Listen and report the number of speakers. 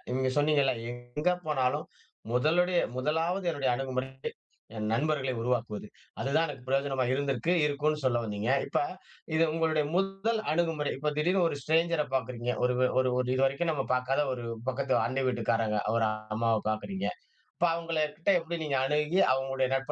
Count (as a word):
one